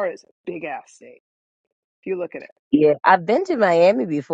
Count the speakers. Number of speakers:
2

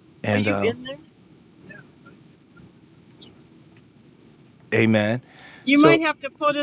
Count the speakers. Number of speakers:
2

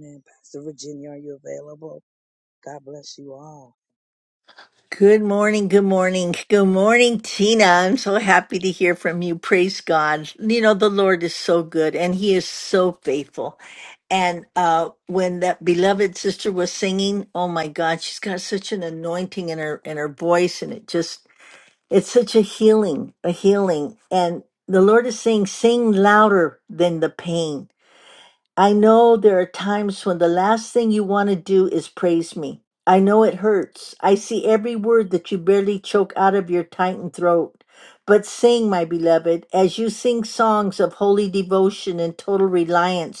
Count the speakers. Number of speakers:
2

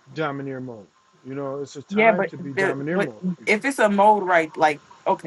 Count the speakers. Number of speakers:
2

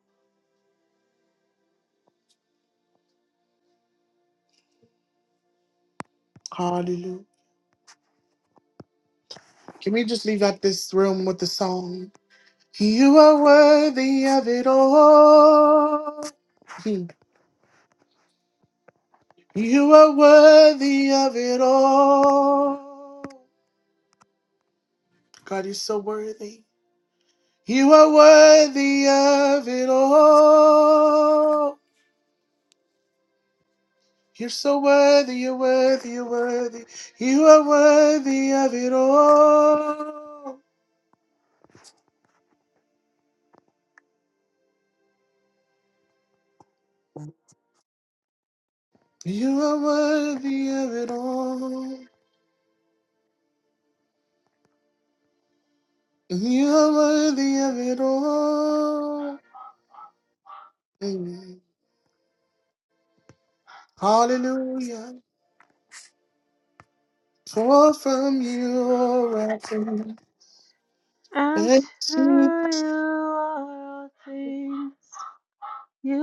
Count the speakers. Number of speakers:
2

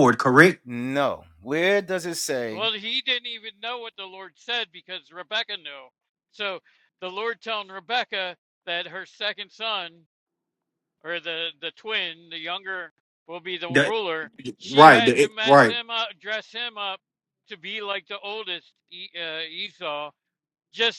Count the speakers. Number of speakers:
3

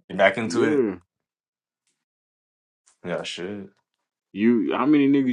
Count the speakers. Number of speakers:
2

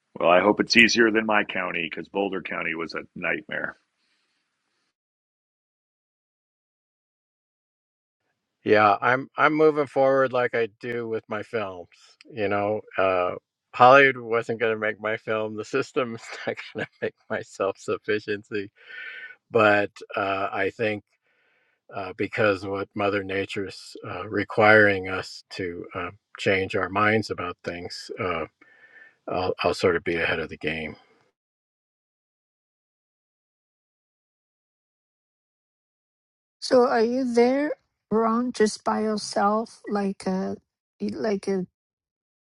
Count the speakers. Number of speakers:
3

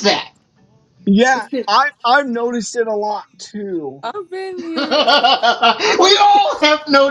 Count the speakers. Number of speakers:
3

